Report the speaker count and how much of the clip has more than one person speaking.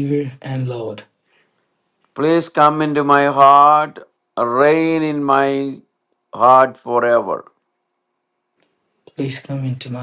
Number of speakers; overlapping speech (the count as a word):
two, no overlap